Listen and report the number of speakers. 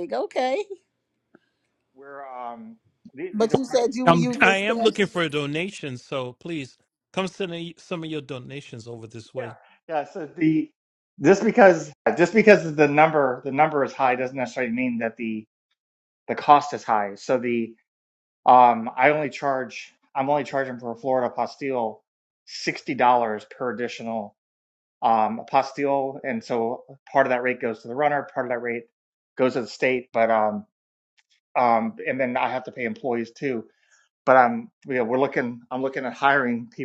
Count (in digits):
3